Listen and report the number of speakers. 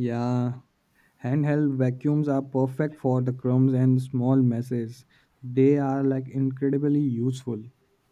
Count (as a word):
one